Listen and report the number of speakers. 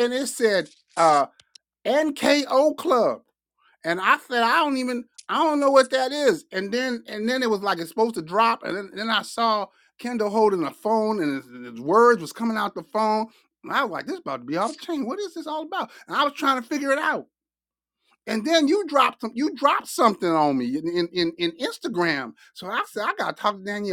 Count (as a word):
one